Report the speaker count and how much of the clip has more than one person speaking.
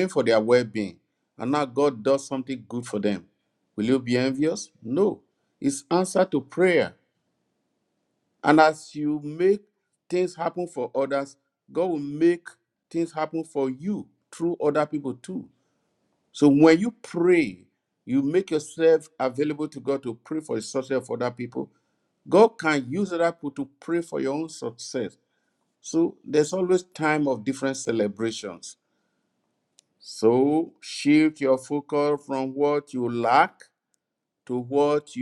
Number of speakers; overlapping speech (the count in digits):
1, no overlap